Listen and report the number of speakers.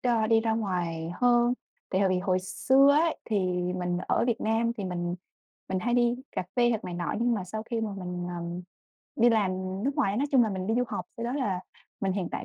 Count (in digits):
1